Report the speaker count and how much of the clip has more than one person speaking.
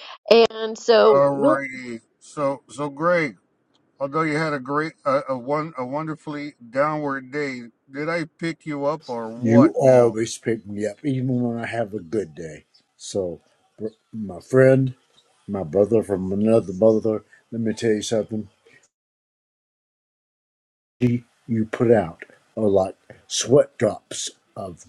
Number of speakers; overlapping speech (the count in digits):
3, about 5%